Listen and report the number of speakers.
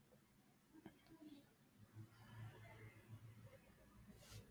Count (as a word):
zero